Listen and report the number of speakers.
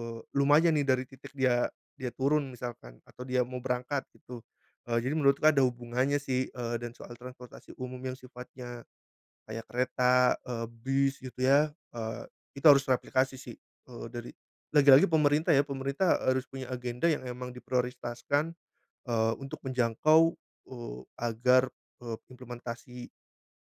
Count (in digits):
1